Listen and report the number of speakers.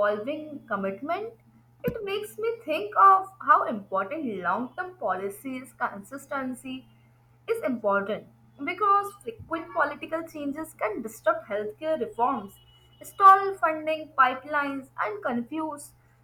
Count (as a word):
one